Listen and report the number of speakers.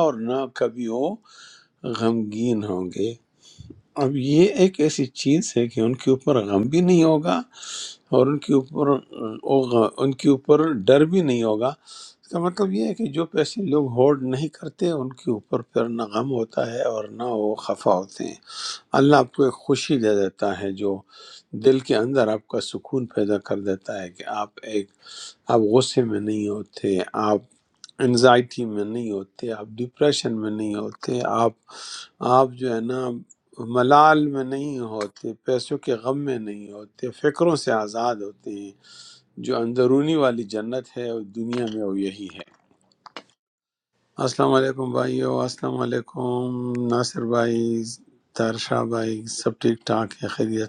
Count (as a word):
one